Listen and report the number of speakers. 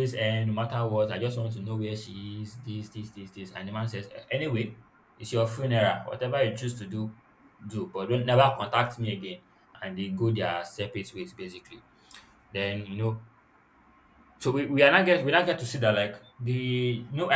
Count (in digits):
1